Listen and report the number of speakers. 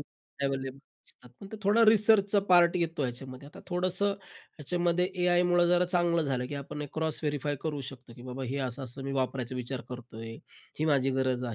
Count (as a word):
one